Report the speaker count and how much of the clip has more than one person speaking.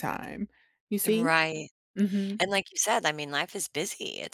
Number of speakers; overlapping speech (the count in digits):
2, about 6%